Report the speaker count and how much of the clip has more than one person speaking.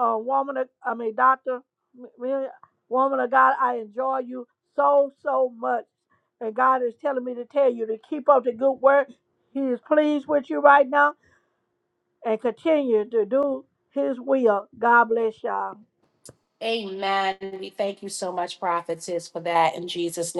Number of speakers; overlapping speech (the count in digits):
2, no overlap